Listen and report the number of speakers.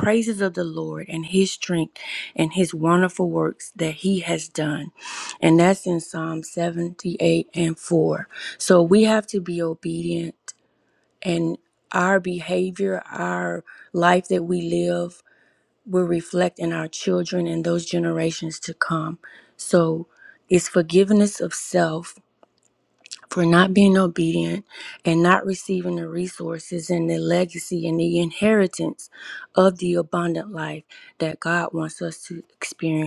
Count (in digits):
1